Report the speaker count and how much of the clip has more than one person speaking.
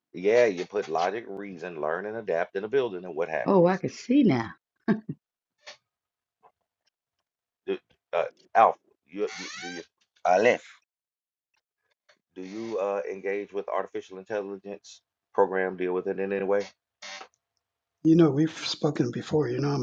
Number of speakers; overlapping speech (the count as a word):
three, under 1%